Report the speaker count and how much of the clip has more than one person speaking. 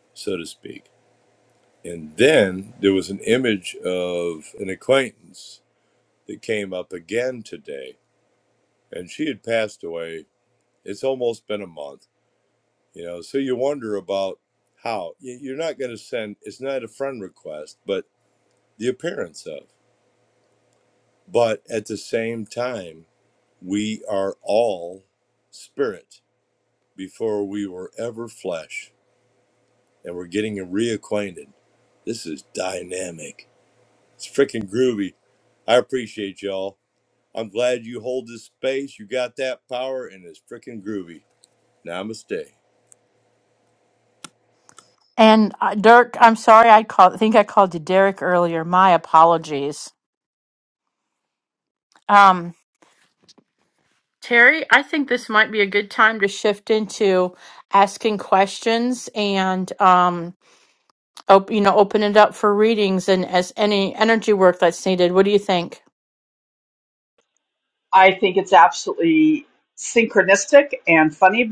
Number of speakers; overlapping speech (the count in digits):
3, no overlap